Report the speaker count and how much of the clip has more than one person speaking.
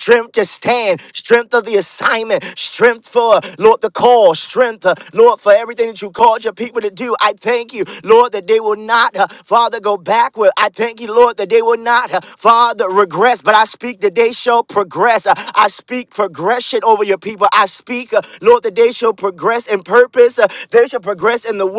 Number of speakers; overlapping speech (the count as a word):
one, no overlap